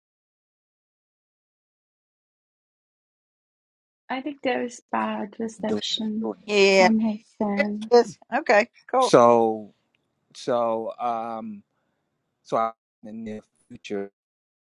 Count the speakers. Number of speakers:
3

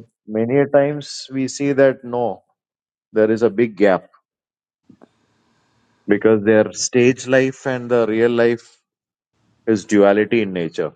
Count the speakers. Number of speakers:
1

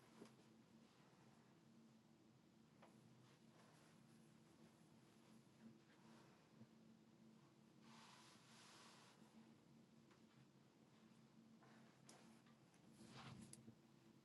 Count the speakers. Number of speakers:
0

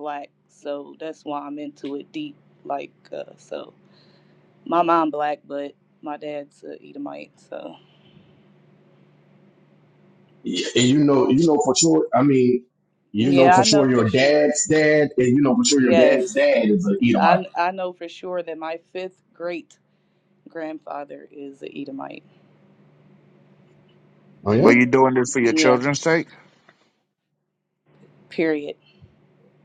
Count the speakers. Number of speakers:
3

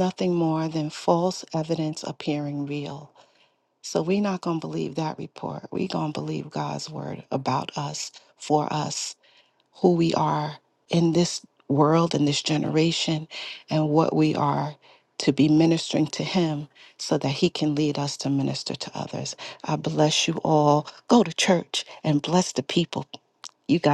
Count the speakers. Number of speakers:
1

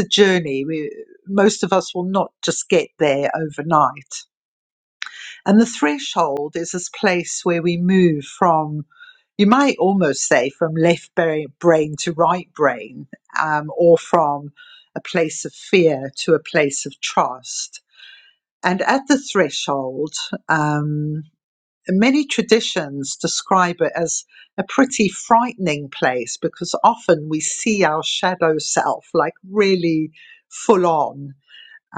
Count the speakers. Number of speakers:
1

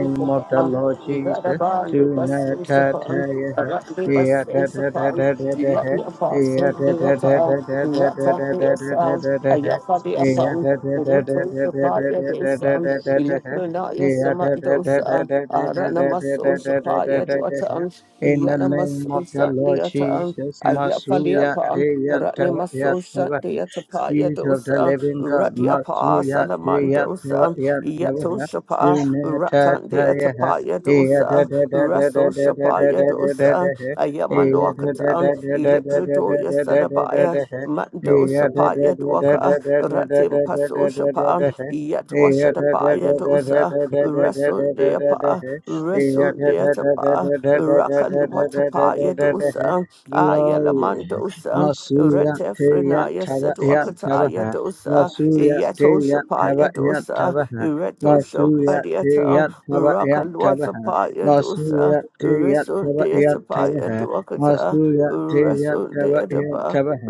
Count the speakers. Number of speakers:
2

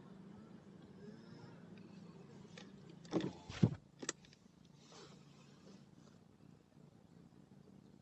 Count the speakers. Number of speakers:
0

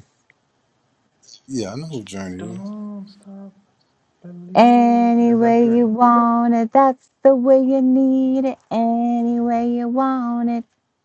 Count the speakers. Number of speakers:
3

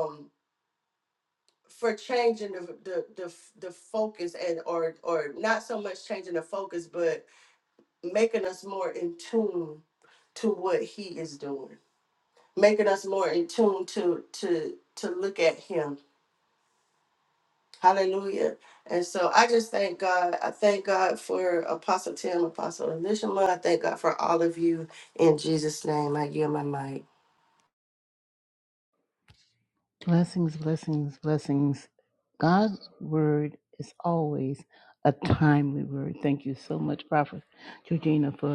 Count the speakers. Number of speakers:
2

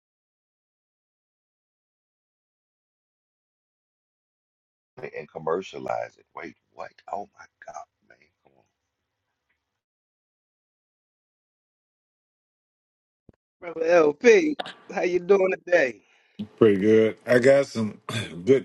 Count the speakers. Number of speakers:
3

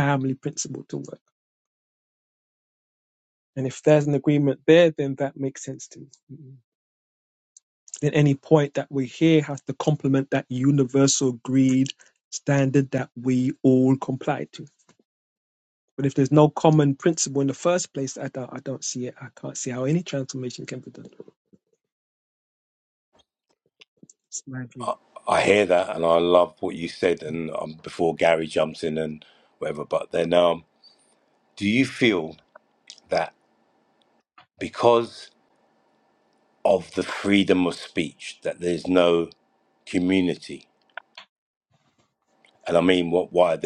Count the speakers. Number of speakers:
2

